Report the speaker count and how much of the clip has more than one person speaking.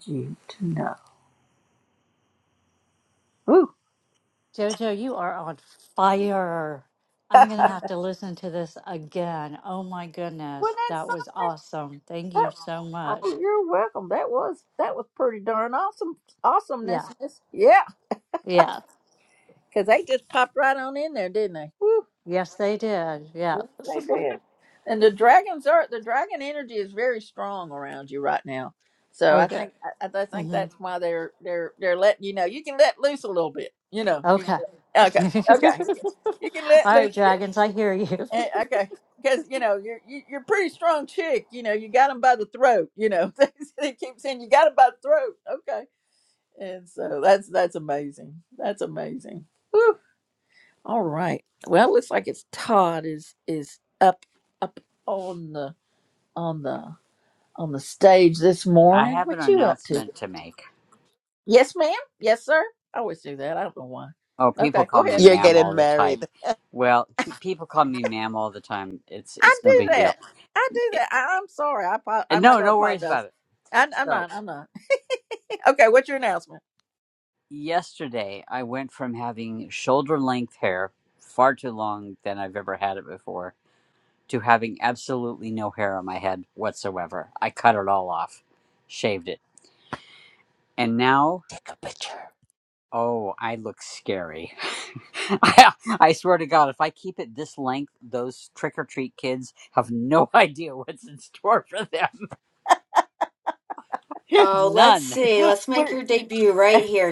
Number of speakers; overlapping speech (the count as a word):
five, about 9%